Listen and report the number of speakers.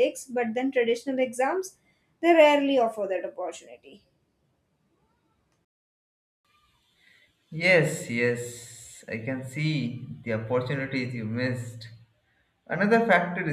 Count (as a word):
two